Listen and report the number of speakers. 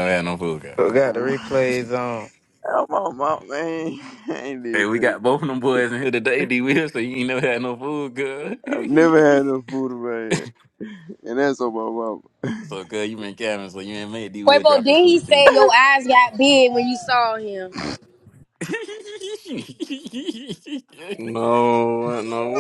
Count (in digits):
5